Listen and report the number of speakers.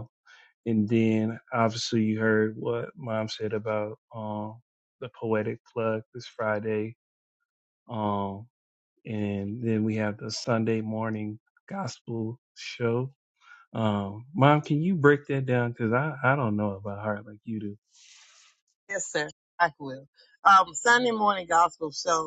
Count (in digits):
2